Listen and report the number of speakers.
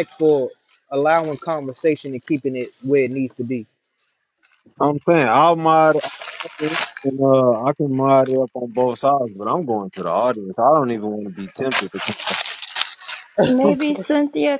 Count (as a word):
three